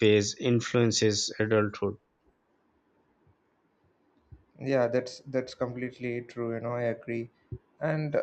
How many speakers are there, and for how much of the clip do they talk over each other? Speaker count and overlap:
2, no overlap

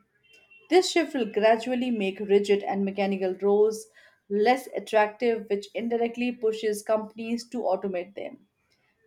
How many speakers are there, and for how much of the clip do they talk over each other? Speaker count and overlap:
1, no overlap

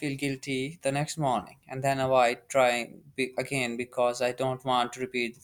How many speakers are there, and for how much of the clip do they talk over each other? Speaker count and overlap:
1, no overlap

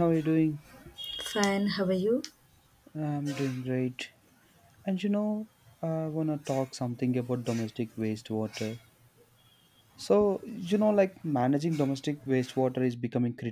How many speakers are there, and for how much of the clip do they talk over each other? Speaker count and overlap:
2, no overlap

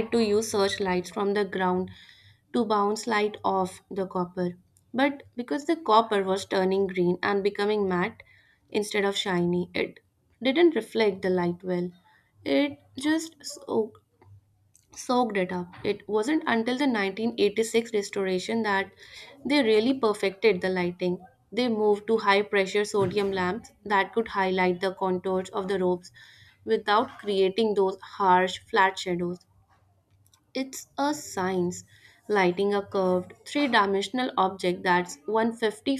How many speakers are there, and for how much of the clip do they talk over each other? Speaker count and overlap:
1, no overlap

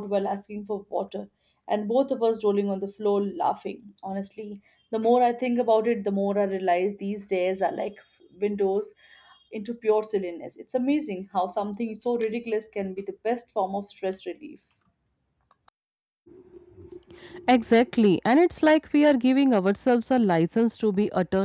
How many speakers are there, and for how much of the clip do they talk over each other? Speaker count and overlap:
2, no overlap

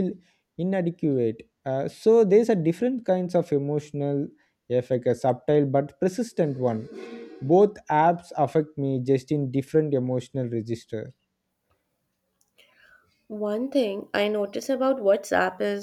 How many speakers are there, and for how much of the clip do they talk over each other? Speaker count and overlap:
2, no overlap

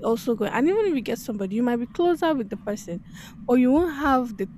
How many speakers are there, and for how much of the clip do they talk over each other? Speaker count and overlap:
1, no overlap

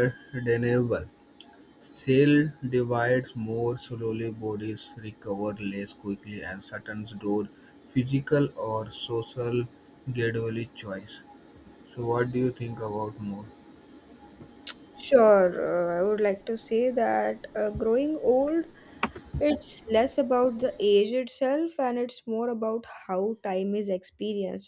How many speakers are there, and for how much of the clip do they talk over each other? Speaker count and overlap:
2, no overlap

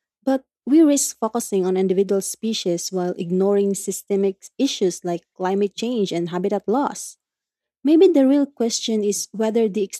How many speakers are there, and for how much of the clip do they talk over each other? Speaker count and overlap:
1, no overlap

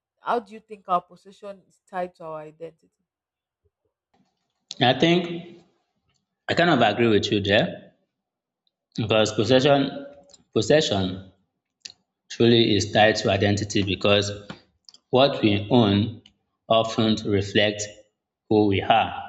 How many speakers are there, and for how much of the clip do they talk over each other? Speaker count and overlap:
2, no overlap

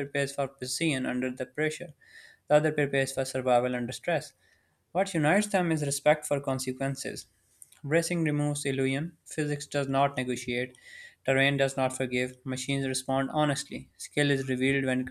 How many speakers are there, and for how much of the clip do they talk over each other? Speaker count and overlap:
1, no overlap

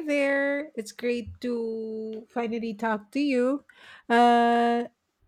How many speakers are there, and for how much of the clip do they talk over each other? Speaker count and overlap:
1, no overlap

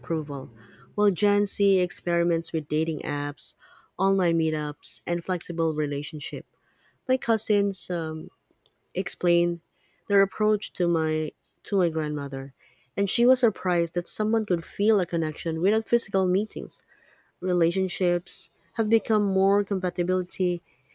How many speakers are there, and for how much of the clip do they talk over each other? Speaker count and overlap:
1, no overlap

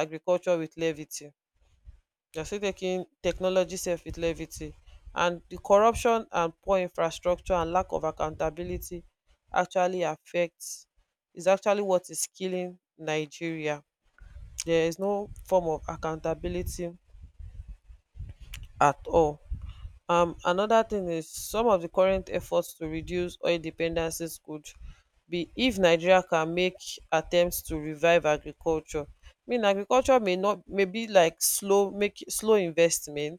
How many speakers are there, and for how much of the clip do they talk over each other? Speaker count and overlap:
1, no overlap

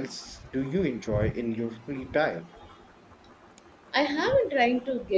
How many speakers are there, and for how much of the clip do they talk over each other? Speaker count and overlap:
2, no overlap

